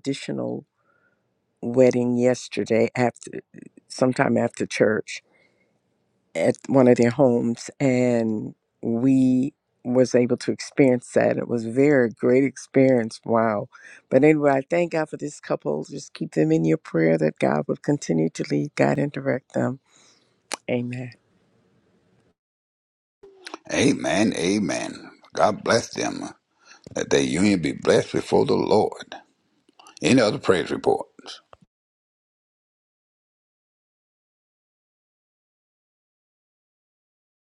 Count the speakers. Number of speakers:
2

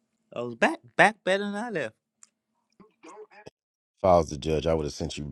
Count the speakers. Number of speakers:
2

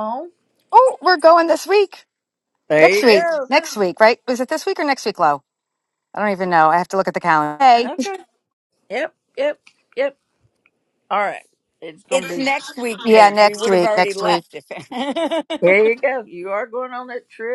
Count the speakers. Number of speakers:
3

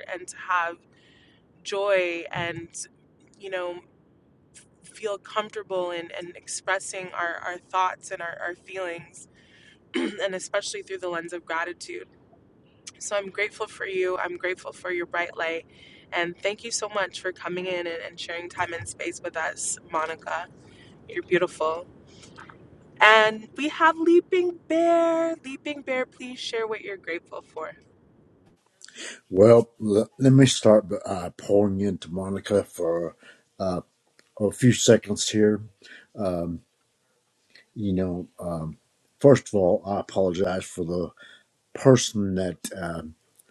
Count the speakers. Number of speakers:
2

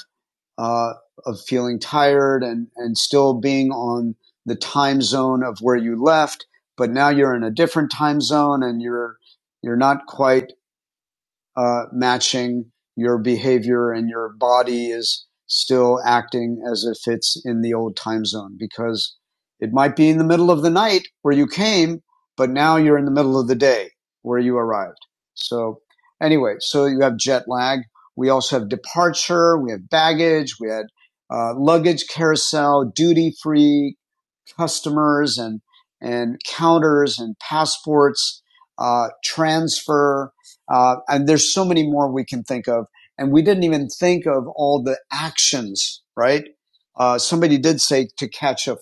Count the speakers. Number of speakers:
1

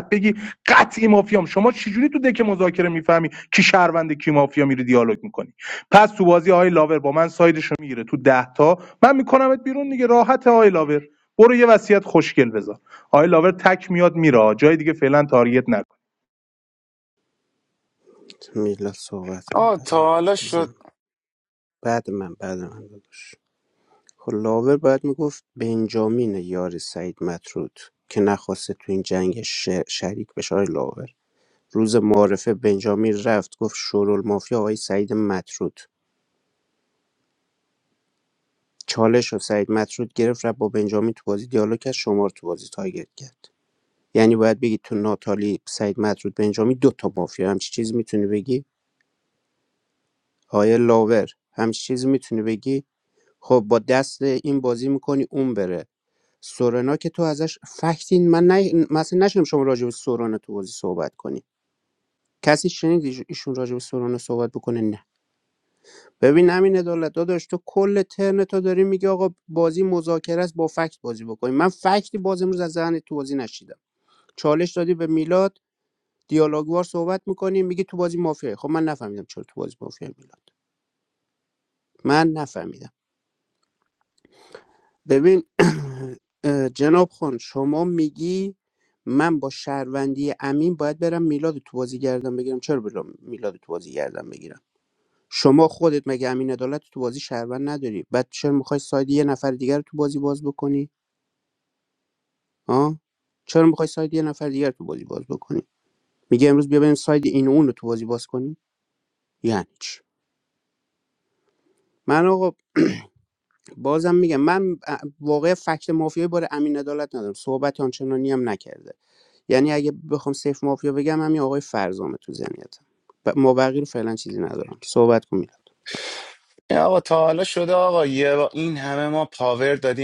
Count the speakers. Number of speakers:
3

